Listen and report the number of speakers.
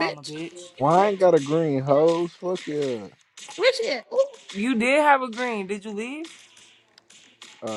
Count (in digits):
3